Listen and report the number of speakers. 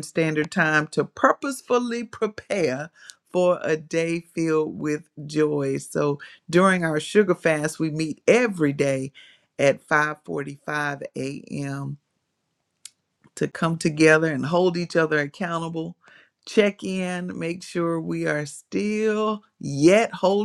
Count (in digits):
1